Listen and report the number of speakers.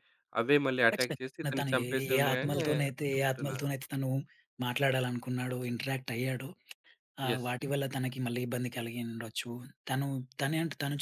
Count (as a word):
two